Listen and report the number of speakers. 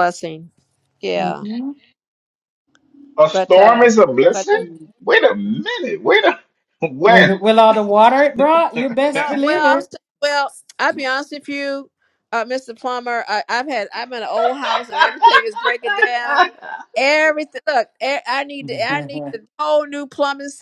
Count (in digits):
3